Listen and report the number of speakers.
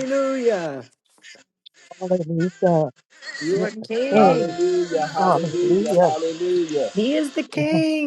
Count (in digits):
3